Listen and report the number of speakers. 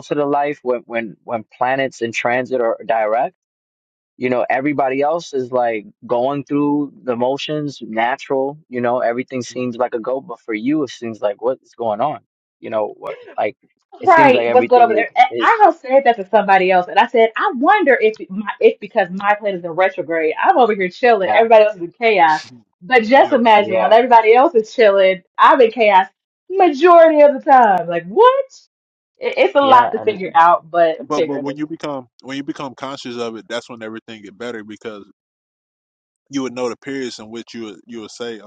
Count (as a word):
three